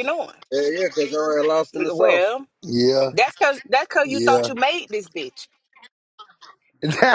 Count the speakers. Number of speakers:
three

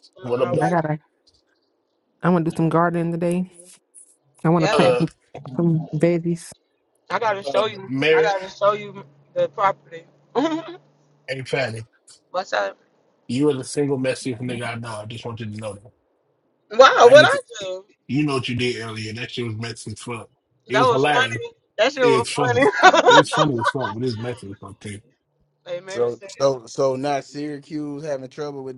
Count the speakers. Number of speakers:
four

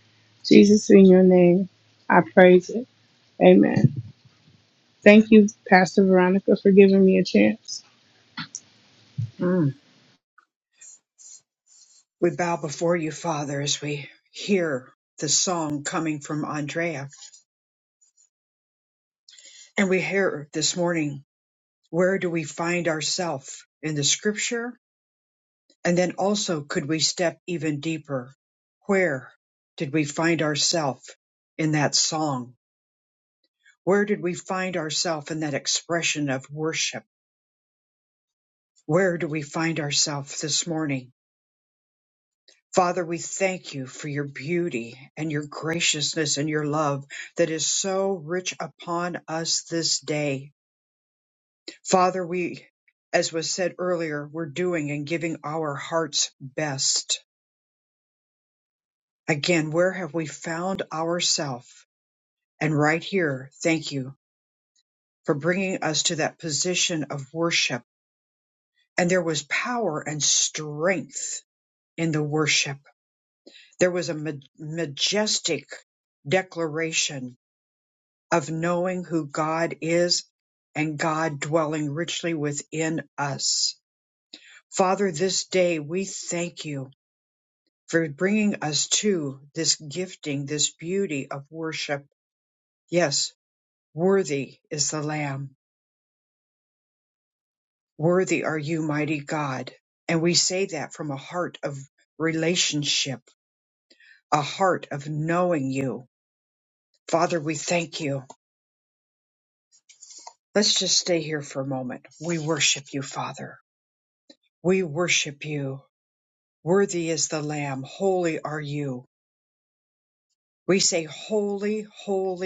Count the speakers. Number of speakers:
two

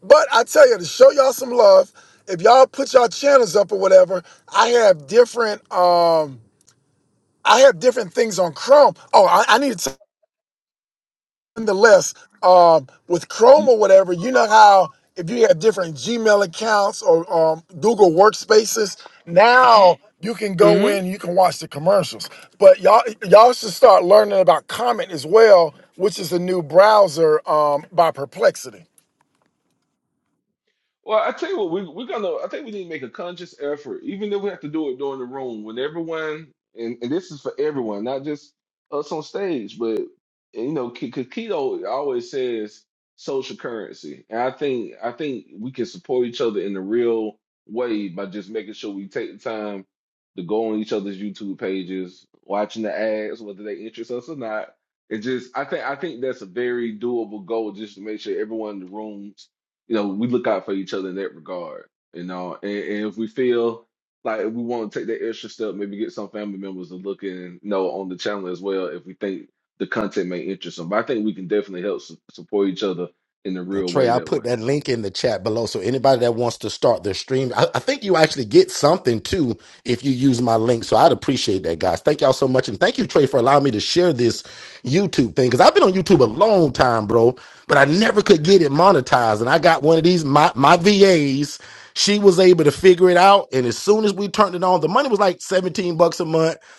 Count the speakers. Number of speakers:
three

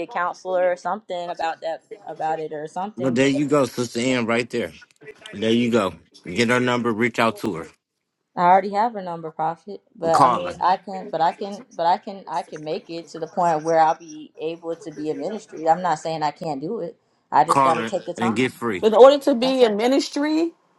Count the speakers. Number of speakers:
three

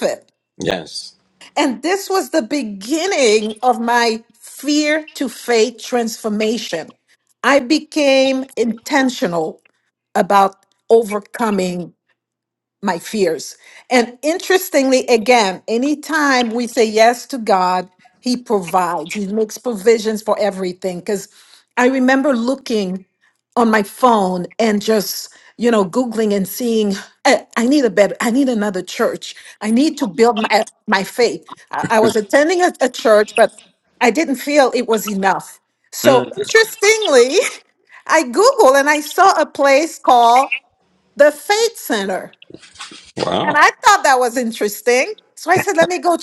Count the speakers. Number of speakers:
two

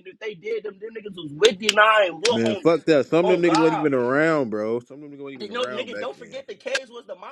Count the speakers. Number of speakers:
two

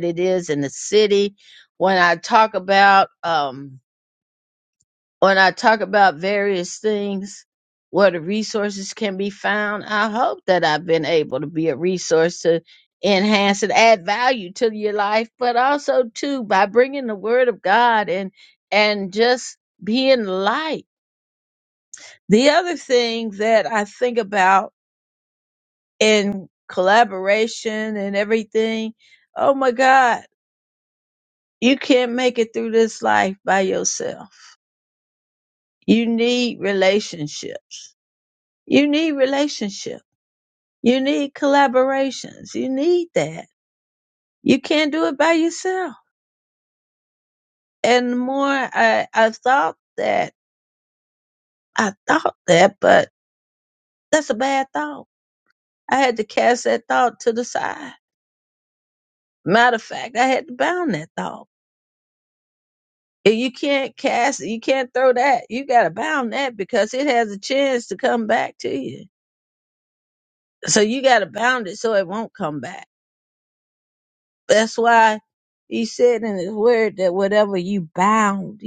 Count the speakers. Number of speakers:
one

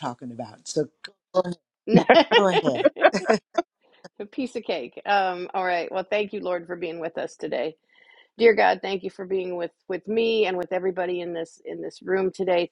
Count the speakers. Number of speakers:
two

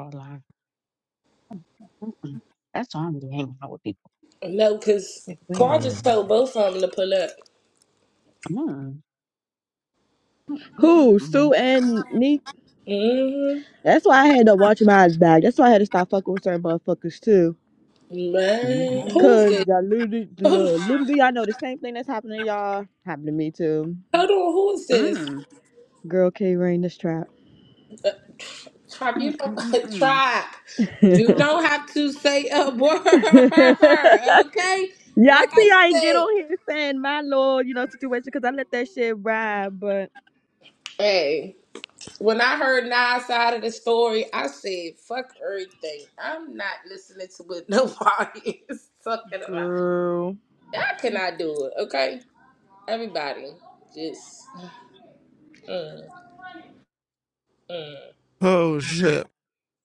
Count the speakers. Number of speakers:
four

